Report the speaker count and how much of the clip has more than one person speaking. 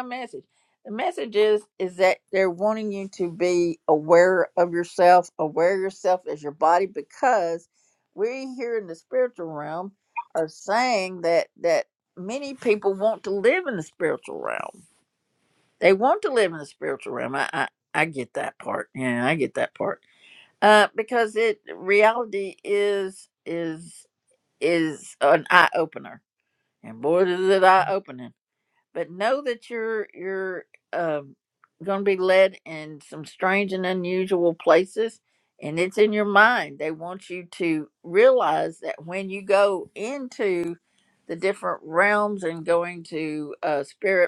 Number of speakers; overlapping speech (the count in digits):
1, no overlap